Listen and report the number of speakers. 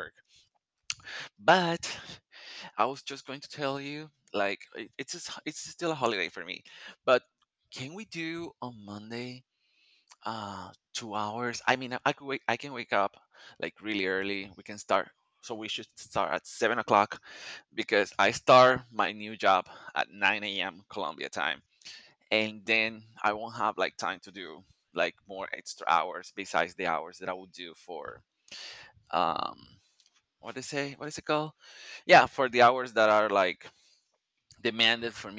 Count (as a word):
one